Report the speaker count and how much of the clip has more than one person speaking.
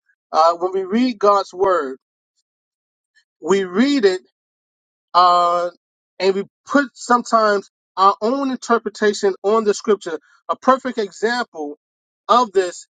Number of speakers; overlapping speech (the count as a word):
one, no overlap